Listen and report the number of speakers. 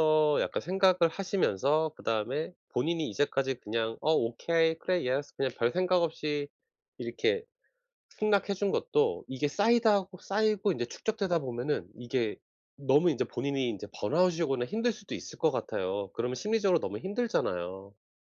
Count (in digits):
1